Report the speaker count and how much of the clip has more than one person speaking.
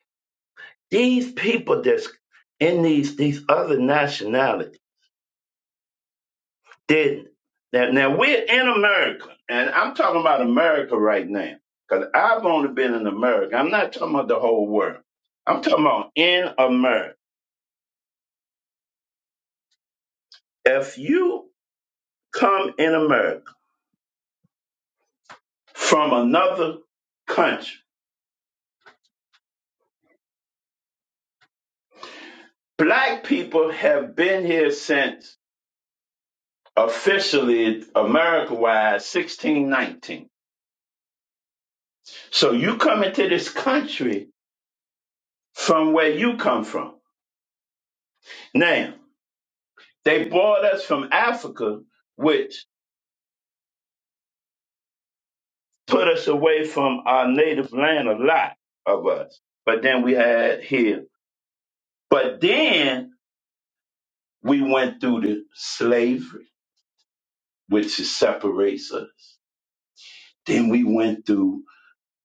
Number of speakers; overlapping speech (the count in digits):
1, no overlap